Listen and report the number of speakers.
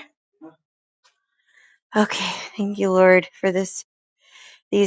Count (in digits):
1